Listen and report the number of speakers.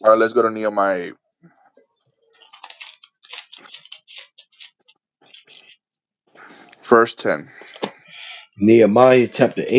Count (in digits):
2